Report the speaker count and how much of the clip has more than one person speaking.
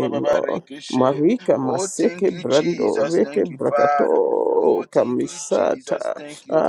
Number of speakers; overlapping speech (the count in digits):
2, about 72%